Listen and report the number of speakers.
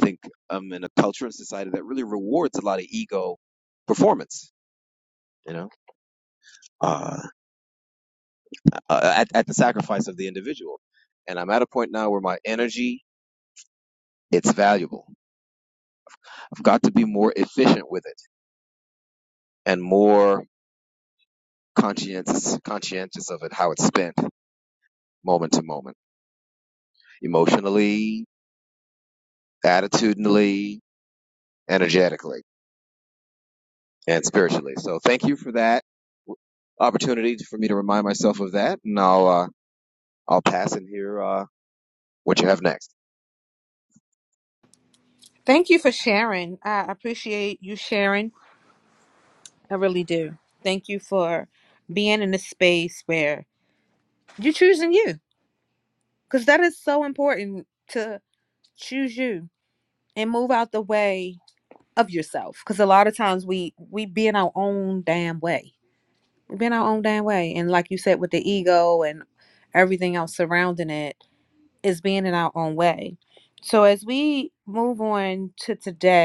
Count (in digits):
2